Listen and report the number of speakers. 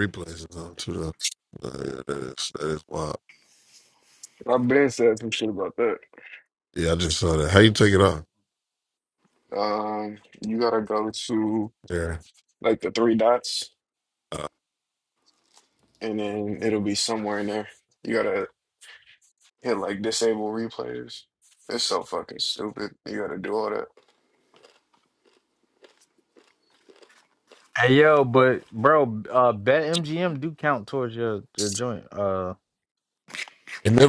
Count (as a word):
three